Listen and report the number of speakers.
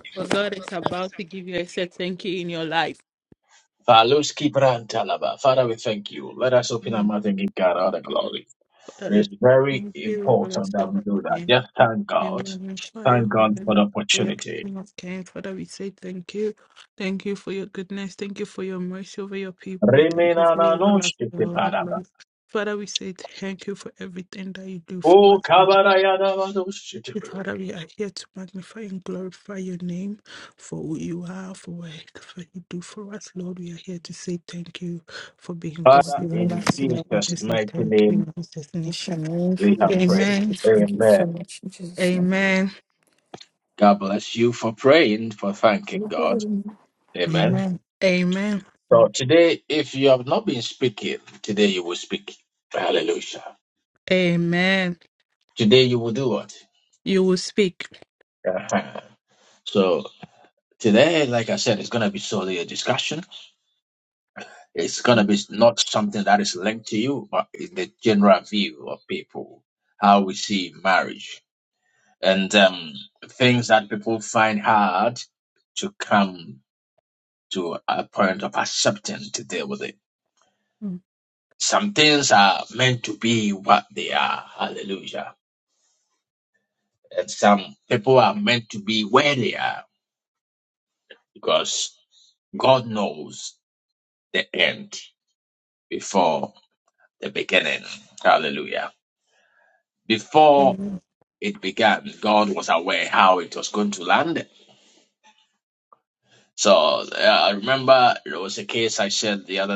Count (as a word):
three